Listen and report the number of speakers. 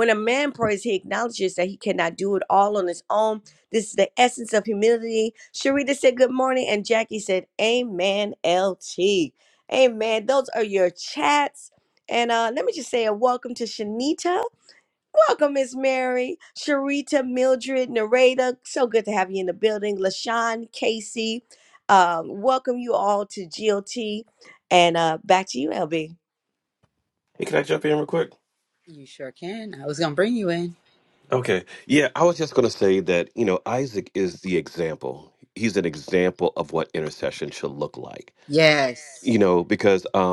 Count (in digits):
3